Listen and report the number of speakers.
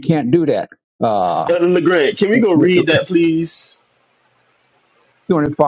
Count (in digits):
2